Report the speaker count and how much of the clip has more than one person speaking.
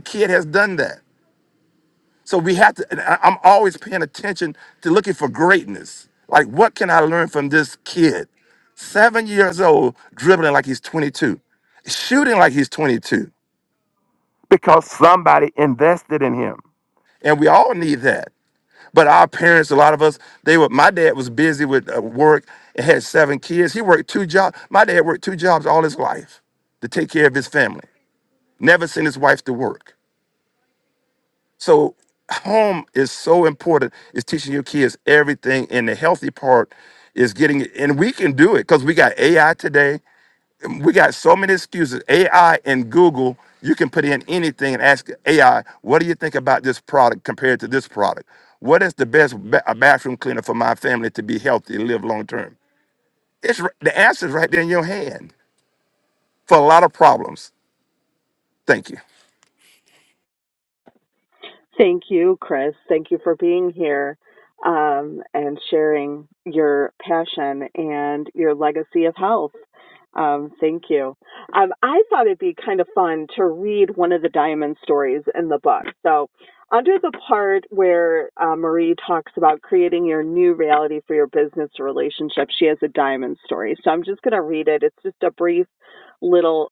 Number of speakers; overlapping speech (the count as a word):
two, no overlap